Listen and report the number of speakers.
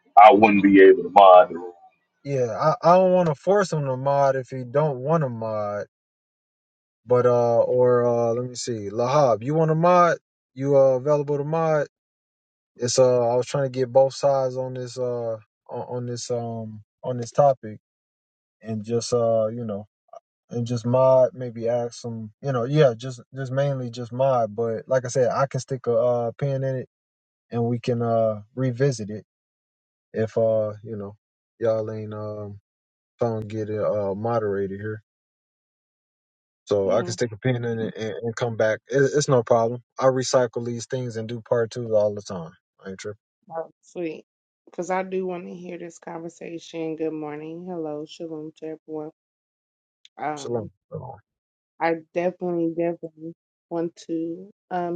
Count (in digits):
3